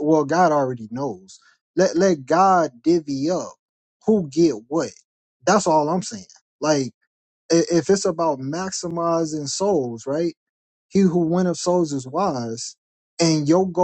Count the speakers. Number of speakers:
1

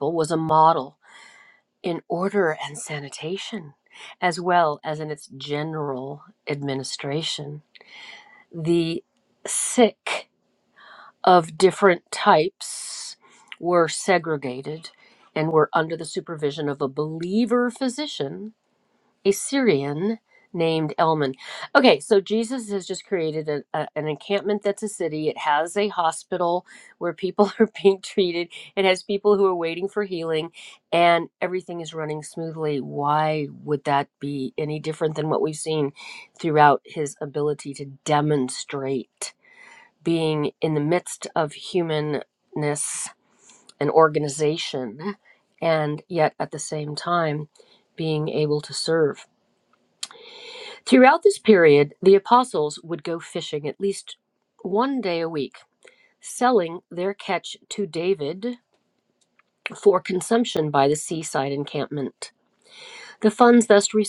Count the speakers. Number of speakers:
1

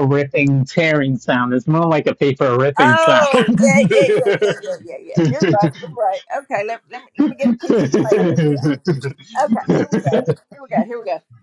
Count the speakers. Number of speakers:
2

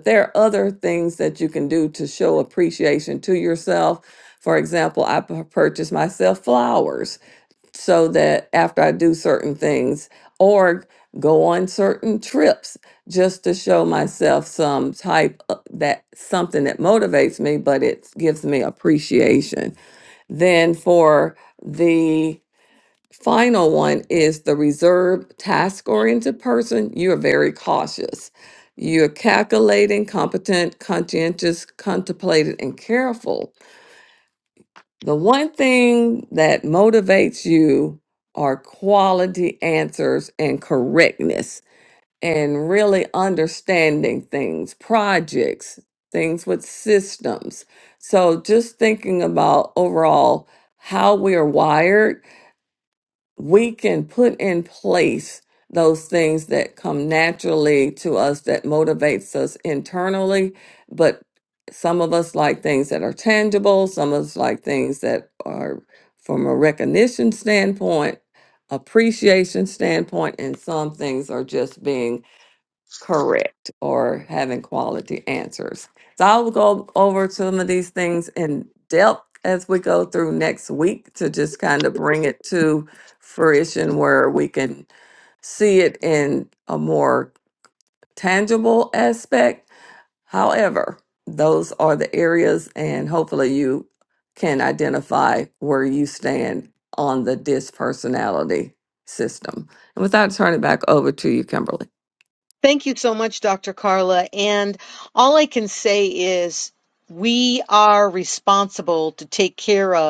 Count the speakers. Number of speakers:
2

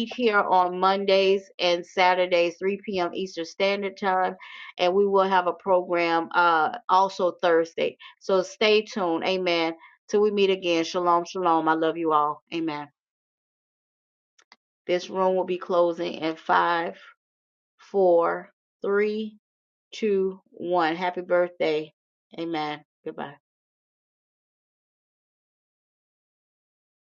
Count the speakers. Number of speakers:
1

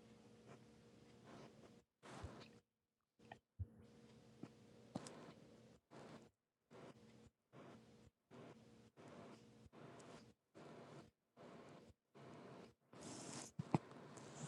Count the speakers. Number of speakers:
0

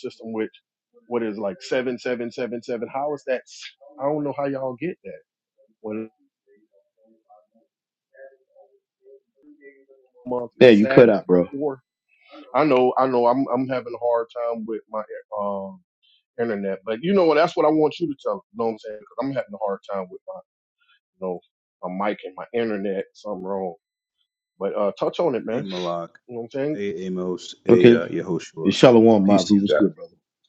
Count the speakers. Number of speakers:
3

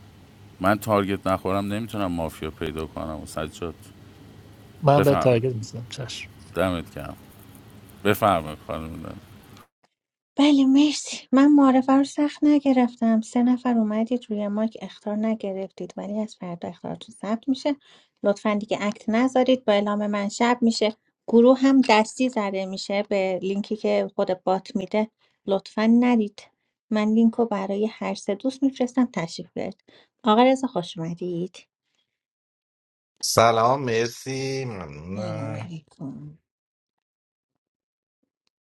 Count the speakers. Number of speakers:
4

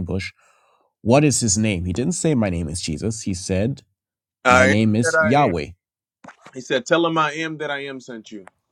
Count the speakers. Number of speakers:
2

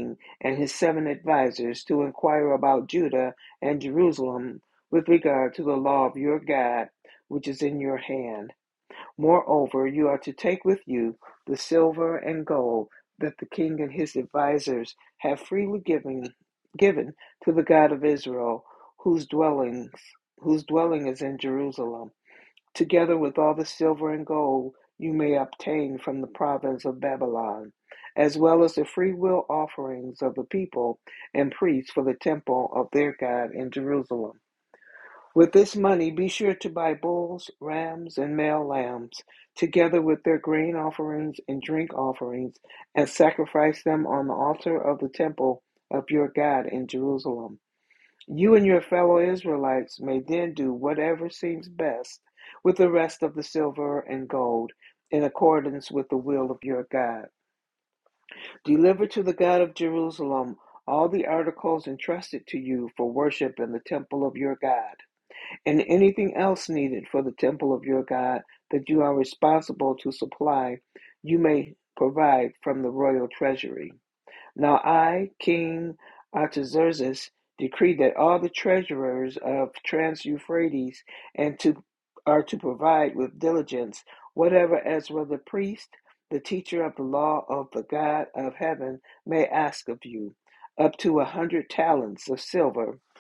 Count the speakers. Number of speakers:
1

